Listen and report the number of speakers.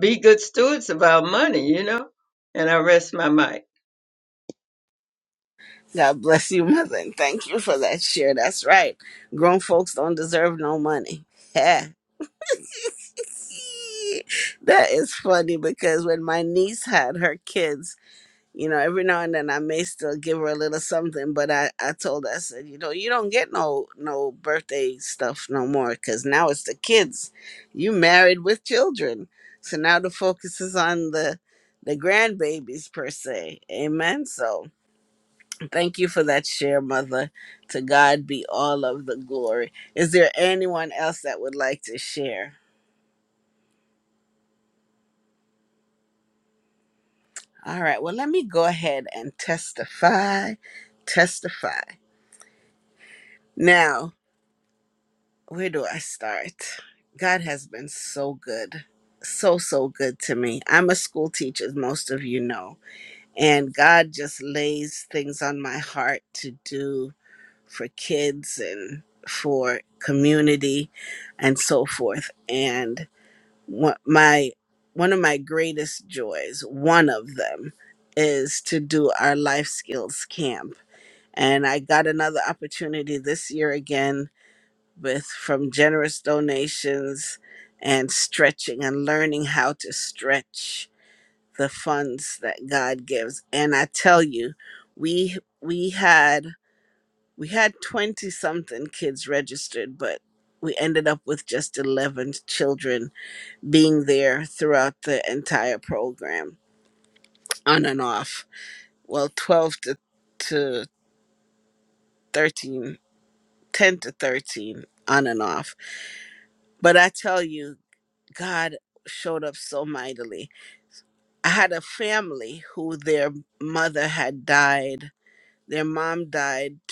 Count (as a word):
two